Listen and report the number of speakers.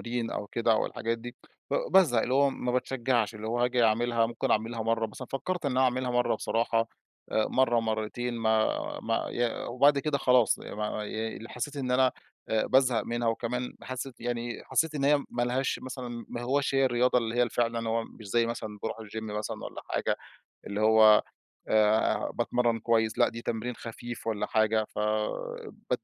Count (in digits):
1